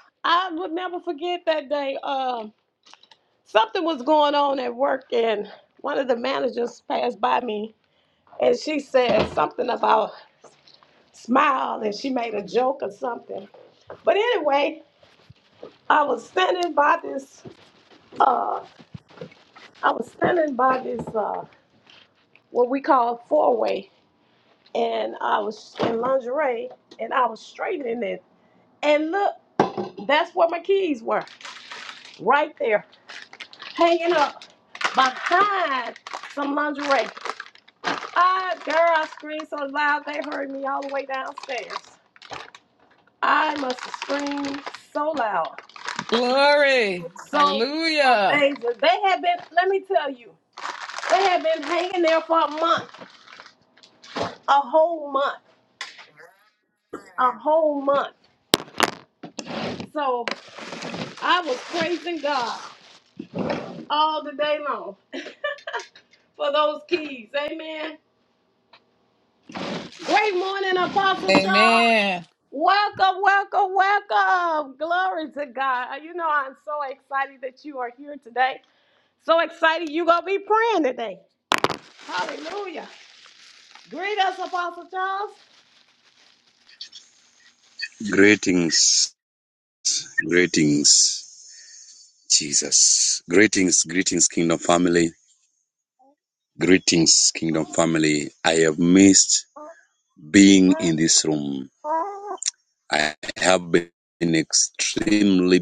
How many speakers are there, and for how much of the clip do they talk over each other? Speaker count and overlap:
3, about 1%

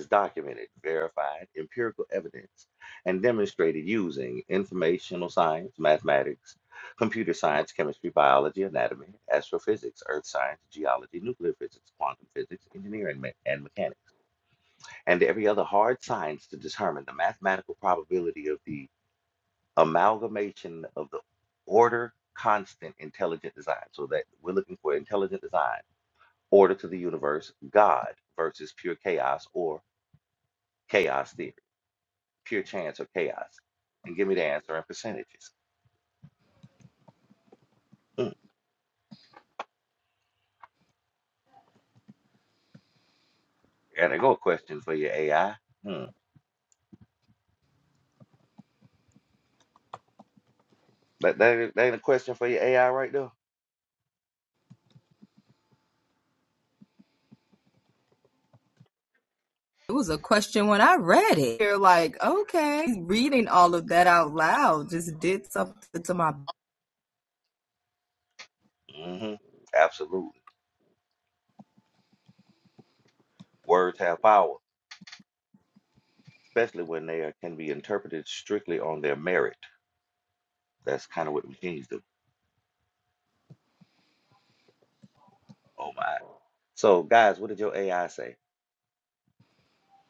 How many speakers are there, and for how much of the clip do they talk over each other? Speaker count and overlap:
2, no overlap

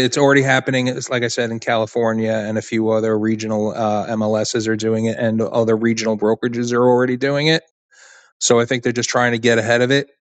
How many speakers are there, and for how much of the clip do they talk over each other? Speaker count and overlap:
1, no overlap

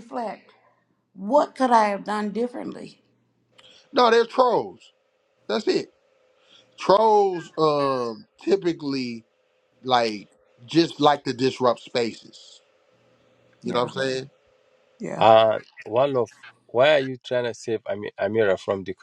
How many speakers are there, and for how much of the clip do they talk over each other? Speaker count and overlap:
3, about 2%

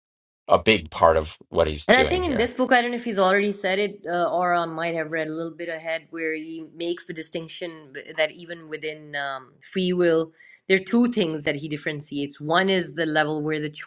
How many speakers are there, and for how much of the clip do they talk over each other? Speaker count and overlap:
2, about 4%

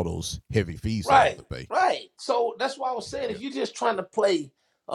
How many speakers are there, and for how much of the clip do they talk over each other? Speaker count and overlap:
2, about 8%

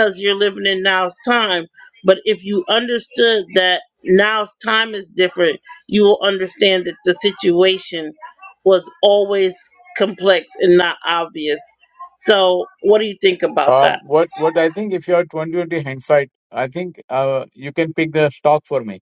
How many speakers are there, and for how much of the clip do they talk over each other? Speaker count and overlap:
2, about 2%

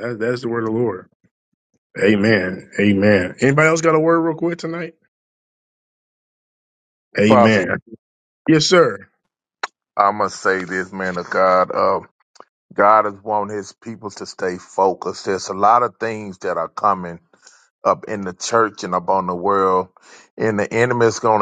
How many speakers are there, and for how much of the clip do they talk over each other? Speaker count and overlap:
2, about 1%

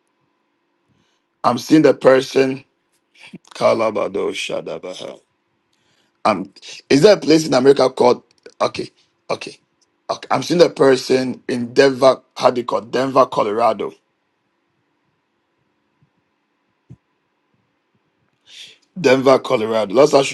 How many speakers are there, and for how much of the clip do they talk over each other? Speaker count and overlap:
1, no overlap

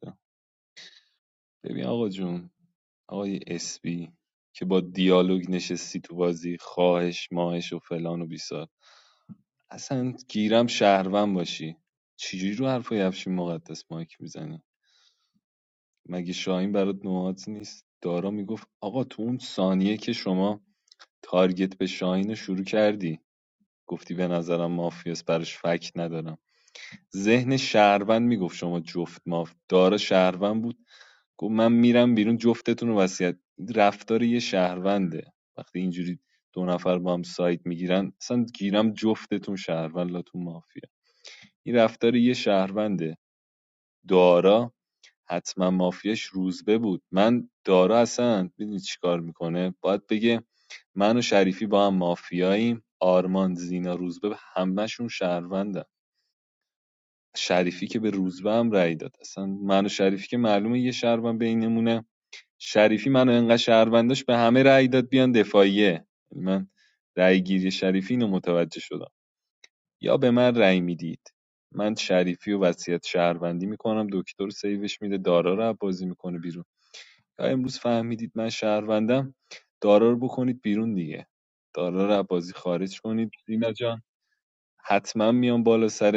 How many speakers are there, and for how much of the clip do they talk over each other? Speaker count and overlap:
1, no overlap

